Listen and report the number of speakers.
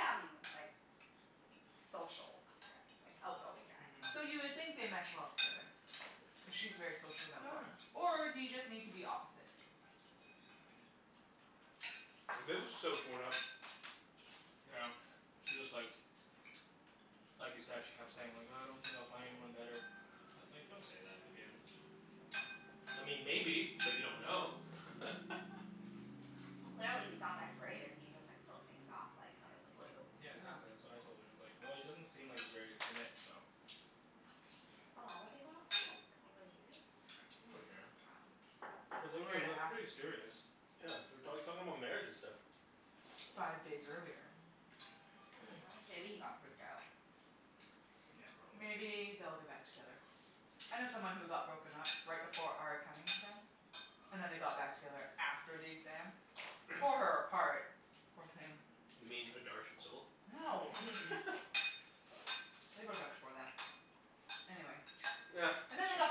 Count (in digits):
4